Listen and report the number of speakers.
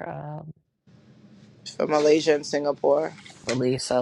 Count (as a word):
two